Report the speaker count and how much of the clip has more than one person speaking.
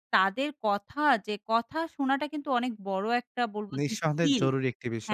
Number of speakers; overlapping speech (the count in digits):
2, about 17%